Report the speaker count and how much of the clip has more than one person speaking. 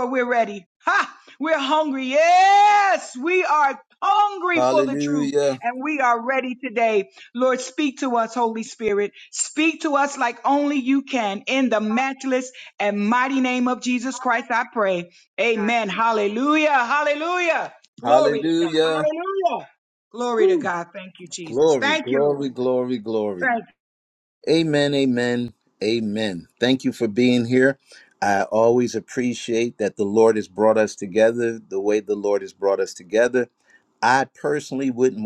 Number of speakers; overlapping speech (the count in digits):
2, about 9%